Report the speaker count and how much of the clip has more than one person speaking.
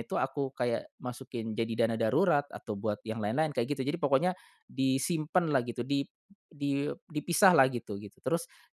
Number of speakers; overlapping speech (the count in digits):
1, no overlap